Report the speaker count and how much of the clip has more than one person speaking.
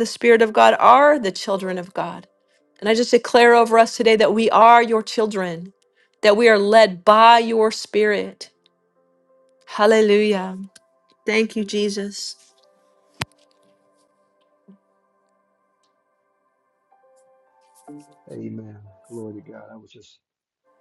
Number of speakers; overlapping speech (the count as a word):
two, no overlap